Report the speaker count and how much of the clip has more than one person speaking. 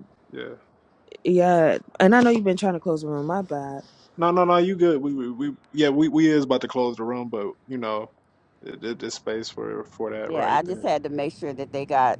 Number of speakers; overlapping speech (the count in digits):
3, about 5%